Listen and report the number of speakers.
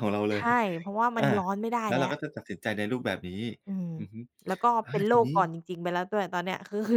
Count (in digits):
2